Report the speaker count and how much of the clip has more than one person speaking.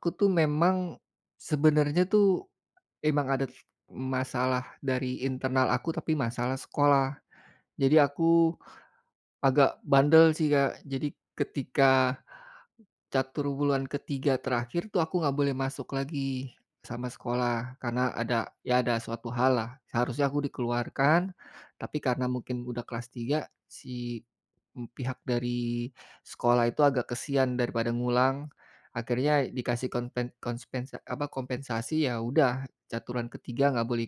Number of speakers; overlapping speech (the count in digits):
1, no overlap